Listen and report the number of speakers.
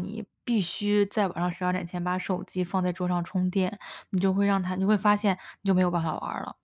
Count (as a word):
one